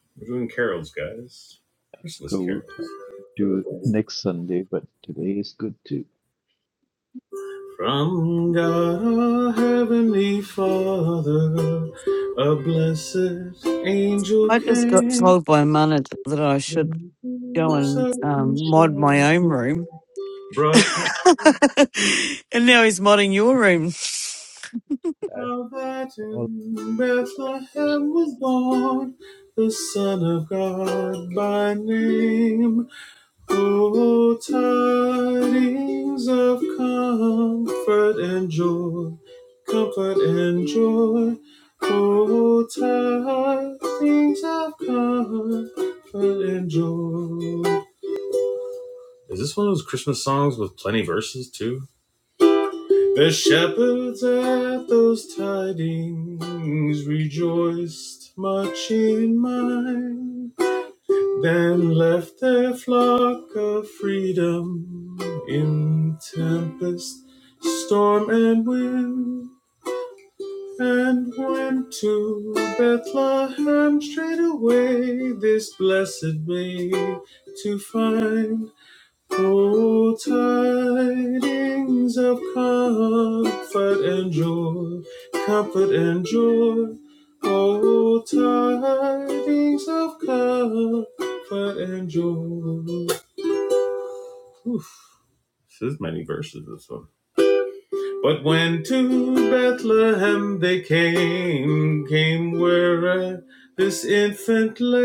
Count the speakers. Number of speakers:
3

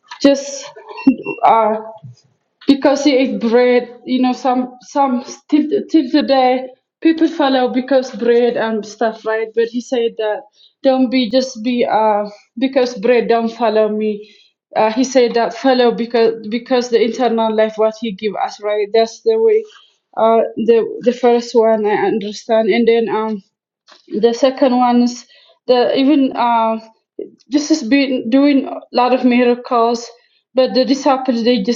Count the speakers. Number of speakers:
1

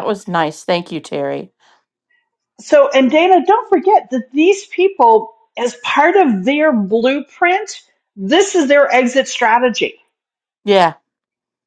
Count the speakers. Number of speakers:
2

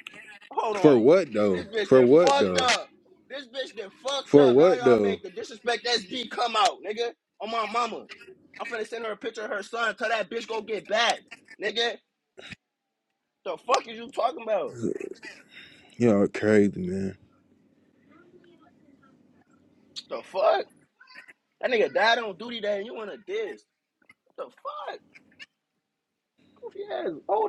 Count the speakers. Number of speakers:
2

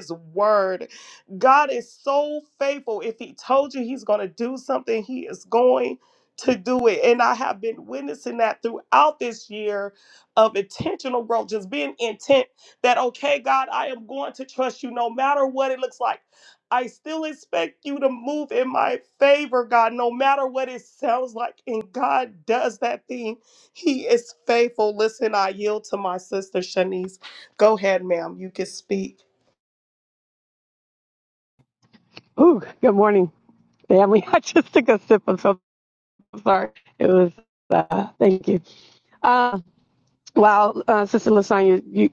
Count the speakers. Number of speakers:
2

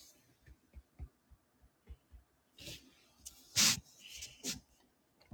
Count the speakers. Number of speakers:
0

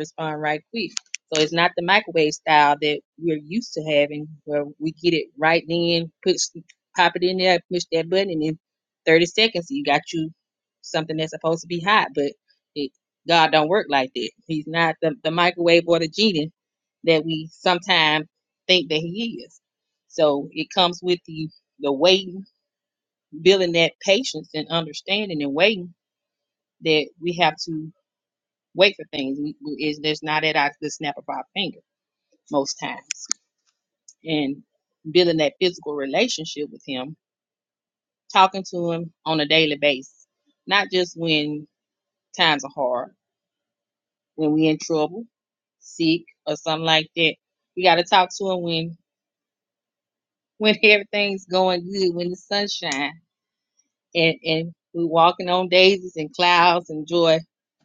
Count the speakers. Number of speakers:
1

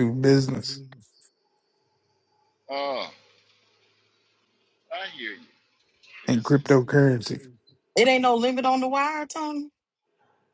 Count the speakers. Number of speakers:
3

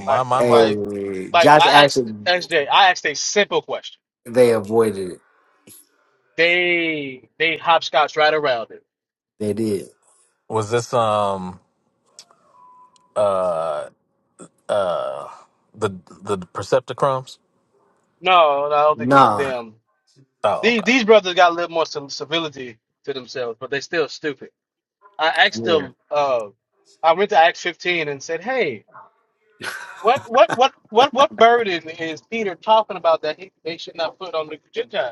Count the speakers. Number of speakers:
3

